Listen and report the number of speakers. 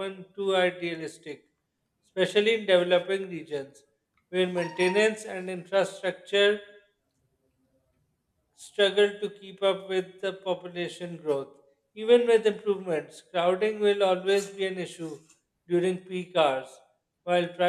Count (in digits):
1